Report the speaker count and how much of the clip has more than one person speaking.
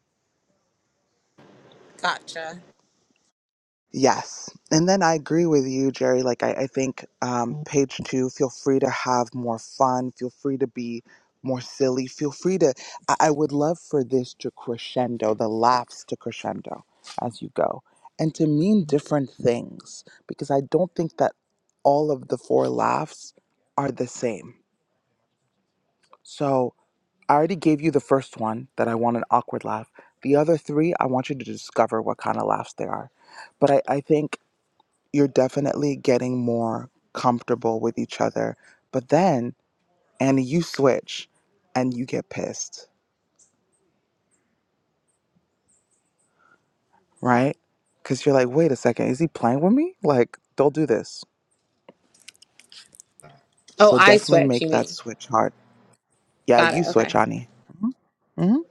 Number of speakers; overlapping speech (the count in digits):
2, about 3%